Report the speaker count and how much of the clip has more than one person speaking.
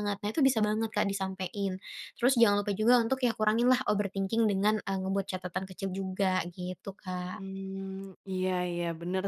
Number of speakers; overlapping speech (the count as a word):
two, no overlap